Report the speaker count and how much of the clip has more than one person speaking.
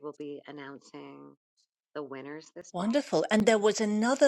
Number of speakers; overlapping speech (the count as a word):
two, about 4%